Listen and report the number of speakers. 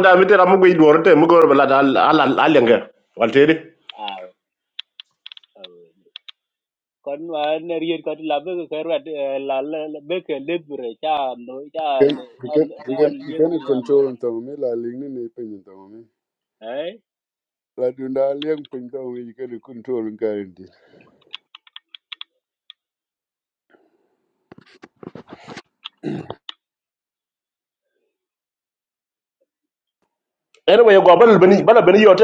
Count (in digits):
3